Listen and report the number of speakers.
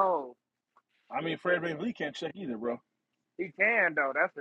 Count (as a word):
two